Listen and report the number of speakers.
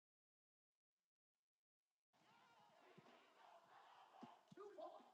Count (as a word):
zero